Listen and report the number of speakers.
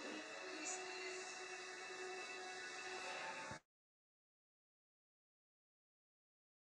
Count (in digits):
0